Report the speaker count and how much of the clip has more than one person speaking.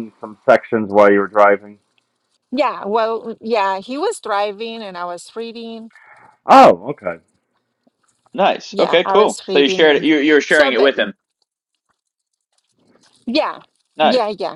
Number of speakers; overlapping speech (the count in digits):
3, about 13%